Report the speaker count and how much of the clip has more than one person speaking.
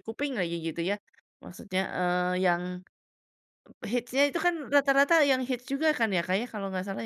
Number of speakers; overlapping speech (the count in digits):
1, no overlap